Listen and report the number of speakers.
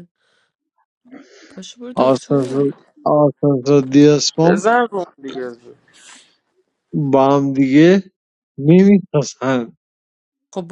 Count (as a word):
three